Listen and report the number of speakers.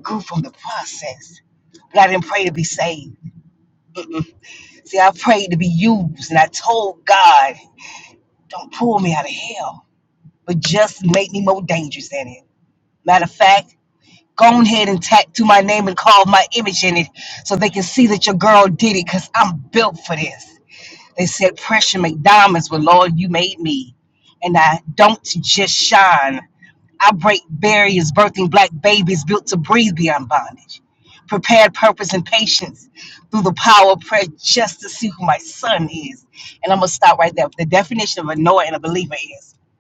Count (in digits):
1